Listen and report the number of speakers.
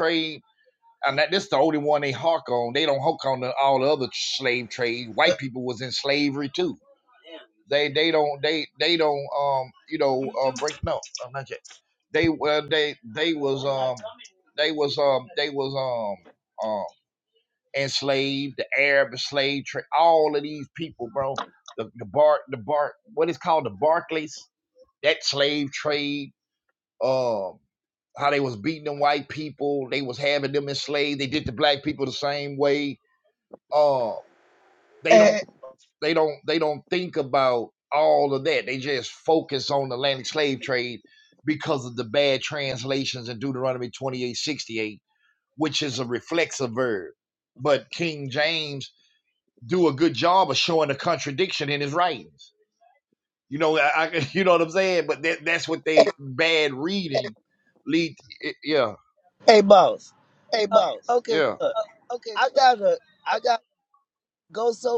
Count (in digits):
2